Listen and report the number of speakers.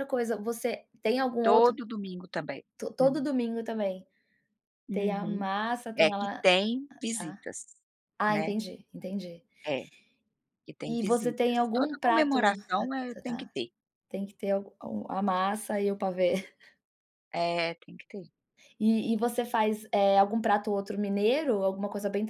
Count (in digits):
2